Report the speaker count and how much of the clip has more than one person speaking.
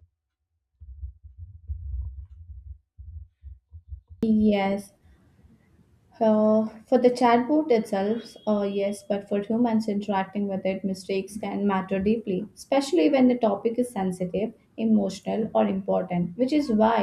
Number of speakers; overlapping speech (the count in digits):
1, no overlap